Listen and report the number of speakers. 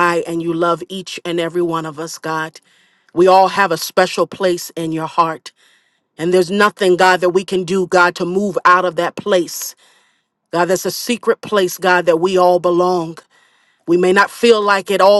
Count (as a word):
one